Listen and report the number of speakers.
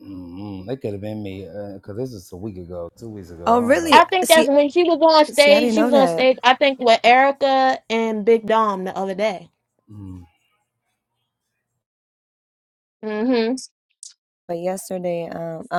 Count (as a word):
three